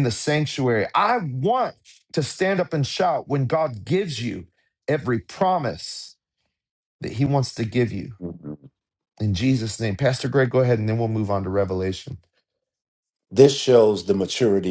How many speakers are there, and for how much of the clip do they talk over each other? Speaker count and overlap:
2, no overlap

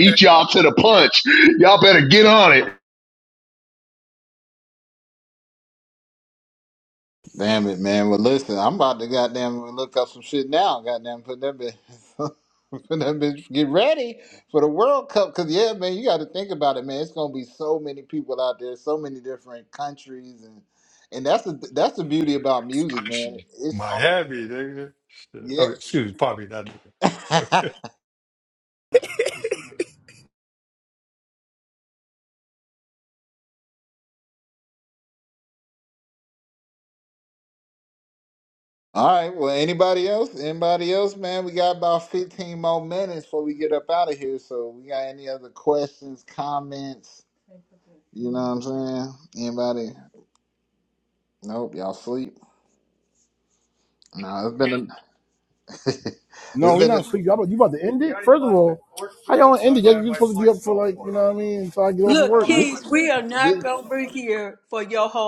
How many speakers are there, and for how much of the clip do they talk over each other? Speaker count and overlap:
5, about 5%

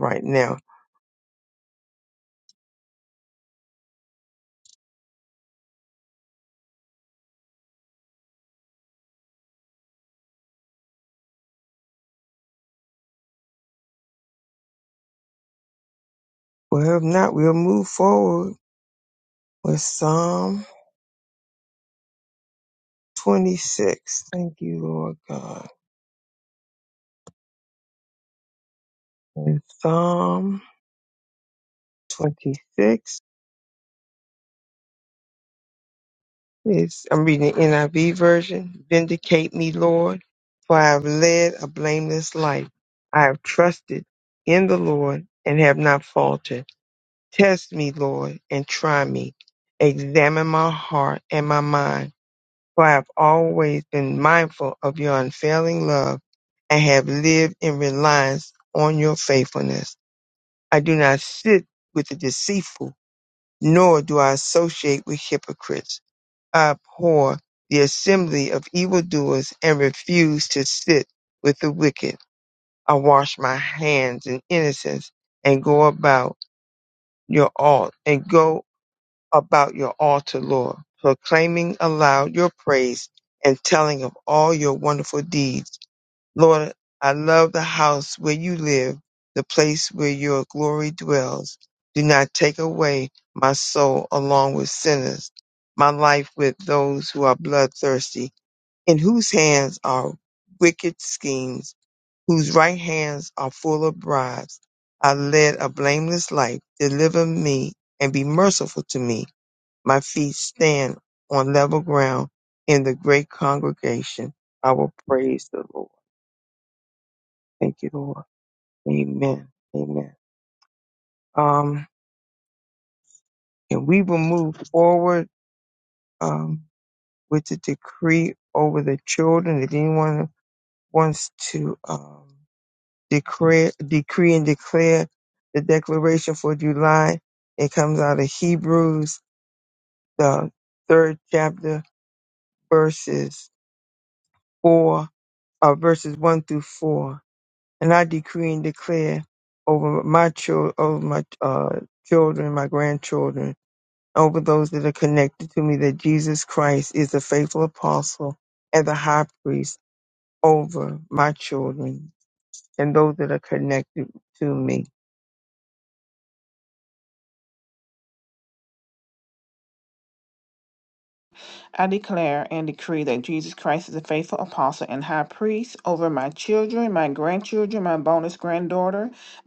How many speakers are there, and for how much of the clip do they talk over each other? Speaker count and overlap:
2, no overlap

